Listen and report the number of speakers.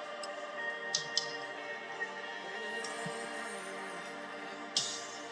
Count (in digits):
0